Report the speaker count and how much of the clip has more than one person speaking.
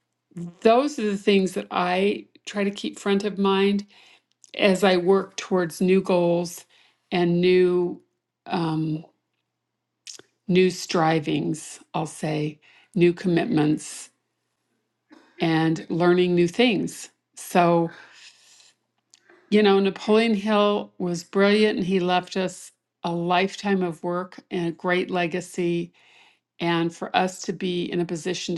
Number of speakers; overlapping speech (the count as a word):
one, no overlap